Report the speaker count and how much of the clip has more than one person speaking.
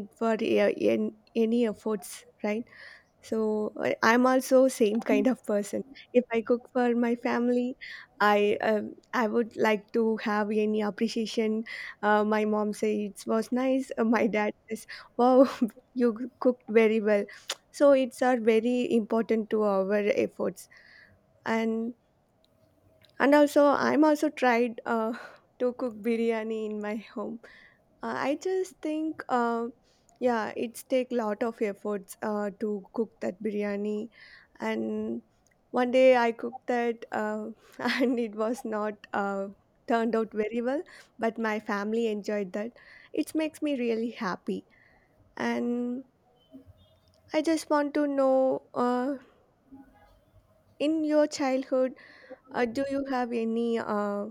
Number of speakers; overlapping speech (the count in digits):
1, no overlap